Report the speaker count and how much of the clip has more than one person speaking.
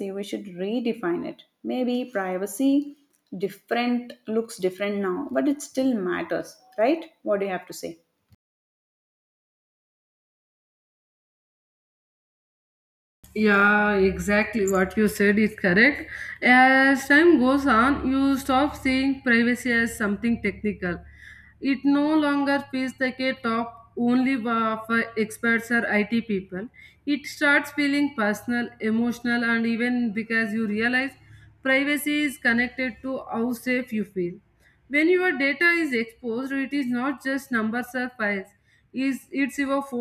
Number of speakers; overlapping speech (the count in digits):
2, no overlap